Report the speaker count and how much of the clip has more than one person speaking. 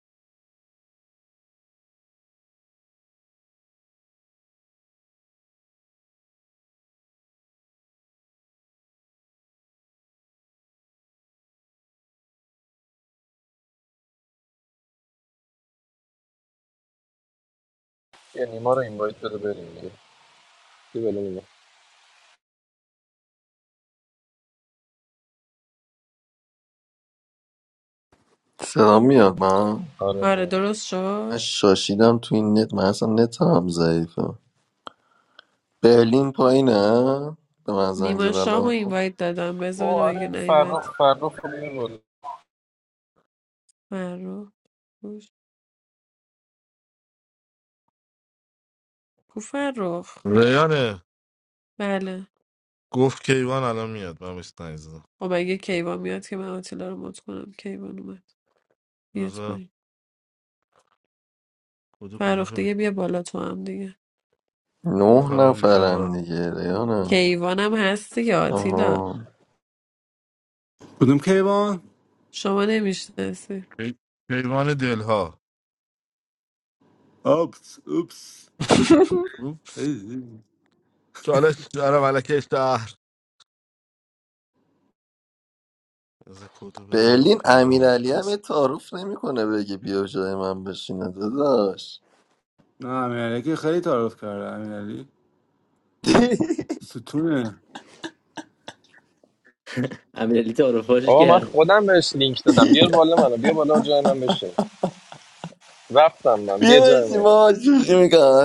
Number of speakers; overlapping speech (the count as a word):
six, about 6%